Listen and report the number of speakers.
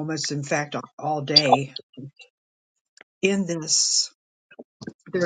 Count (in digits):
1